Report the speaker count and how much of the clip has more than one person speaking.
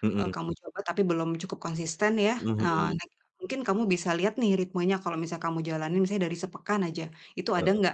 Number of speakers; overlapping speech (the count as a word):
two, about 7%